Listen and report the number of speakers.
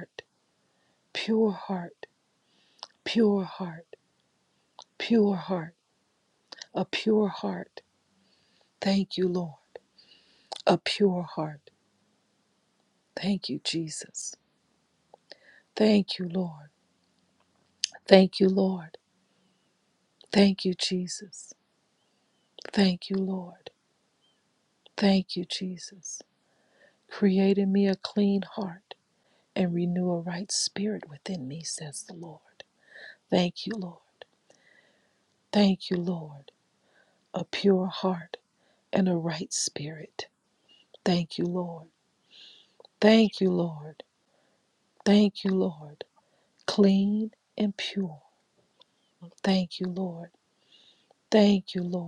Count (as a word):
one